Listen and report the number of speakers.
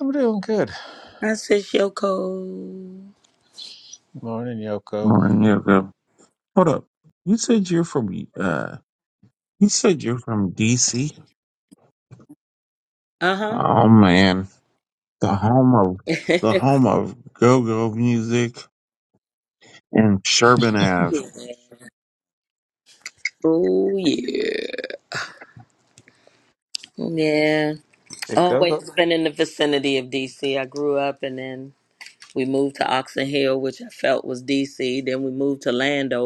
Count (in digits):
3